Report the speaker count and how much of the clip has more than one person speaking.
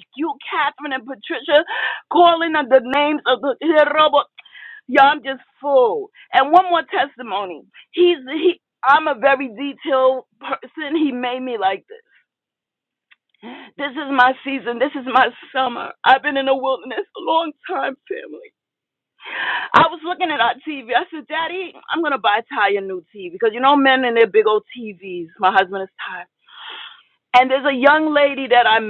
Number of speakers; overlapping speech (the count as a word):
one, no overlap